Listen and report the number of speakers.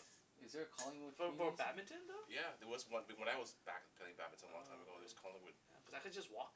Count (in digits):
3